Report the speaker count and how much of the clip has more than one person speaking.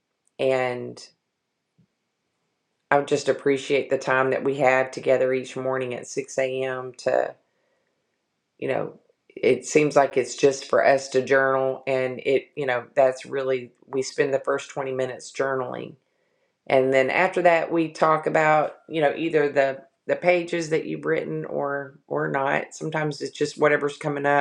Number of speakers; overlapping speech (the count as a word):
one, no overlap